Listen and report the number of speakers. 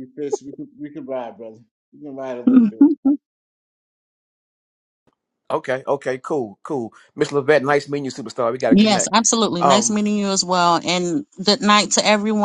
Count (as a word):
three